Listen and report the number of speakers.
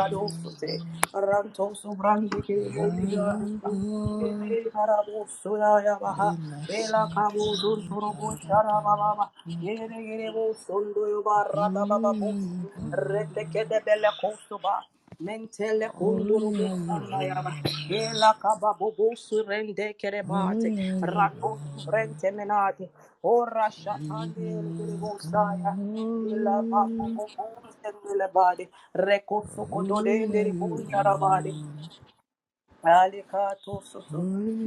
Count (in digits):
2